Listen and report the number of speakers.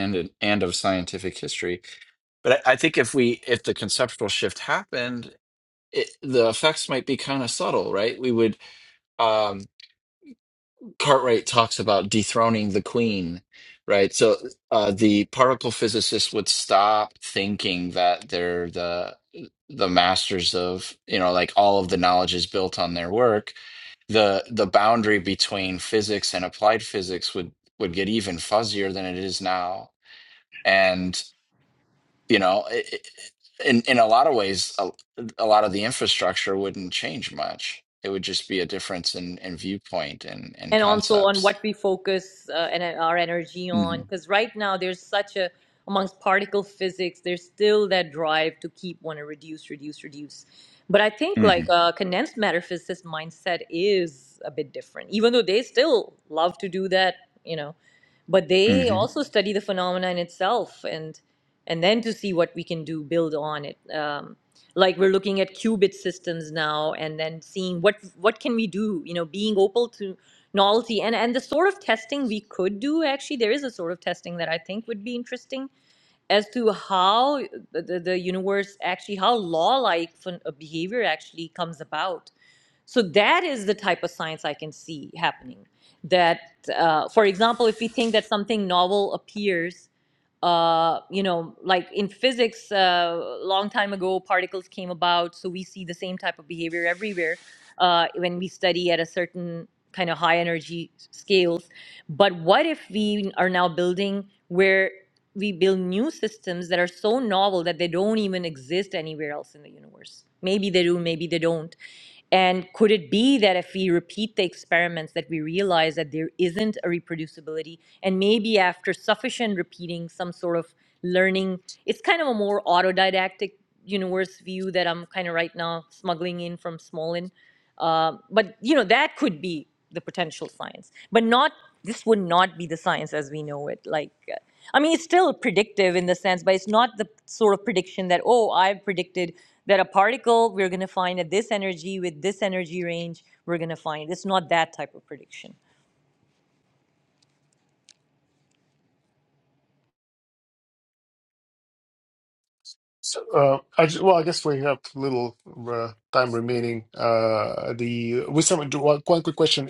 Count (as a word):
three